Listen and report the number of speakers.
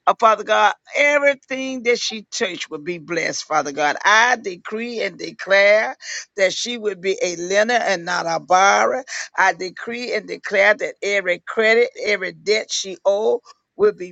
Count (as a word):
one